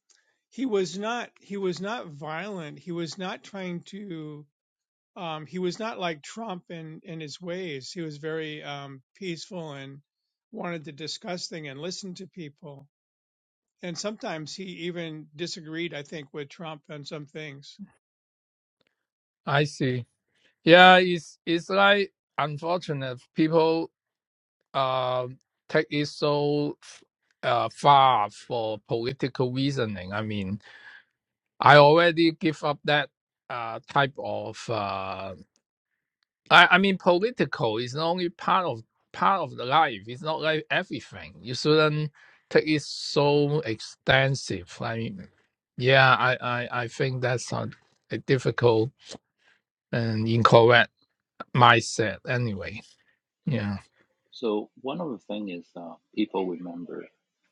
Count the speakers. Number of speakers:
3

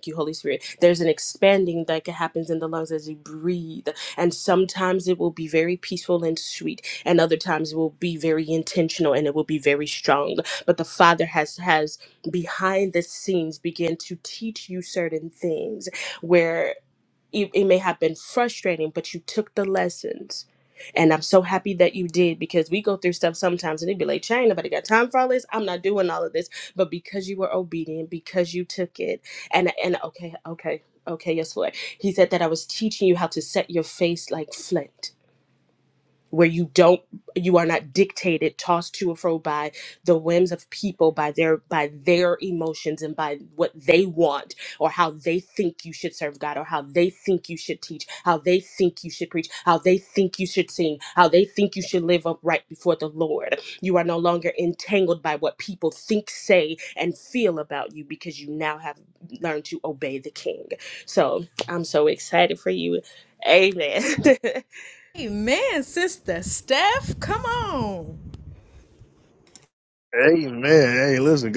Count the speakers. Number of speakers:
3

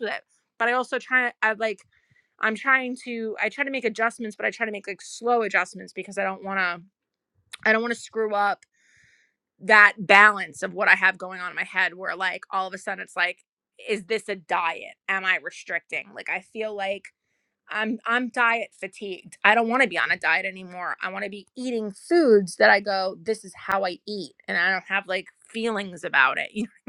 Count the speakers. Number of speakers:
1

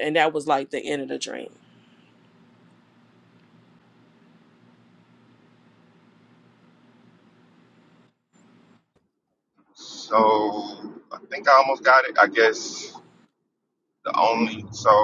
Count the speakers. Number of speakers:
2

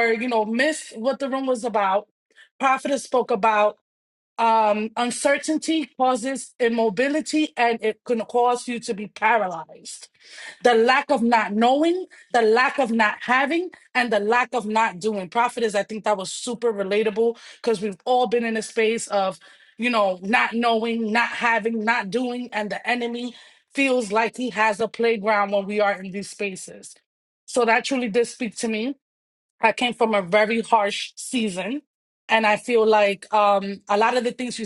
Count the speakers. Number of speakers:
1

